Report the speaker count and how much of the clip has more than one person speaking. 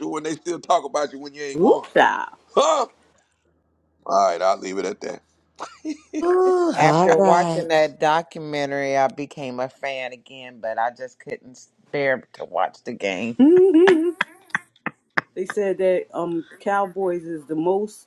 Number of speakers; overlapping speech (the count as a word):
four, about 7%